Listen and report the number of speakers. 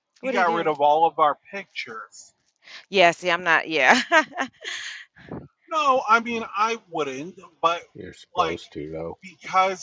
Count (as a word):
three